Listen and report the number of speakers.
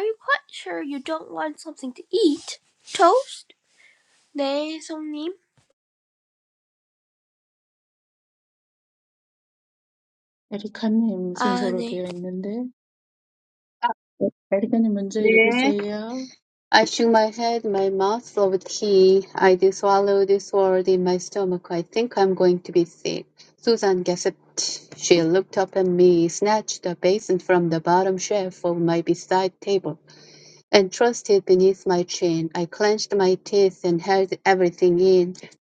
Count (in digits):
3